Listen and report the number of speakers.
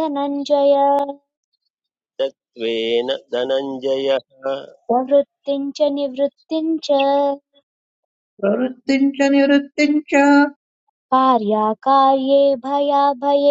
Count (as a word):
three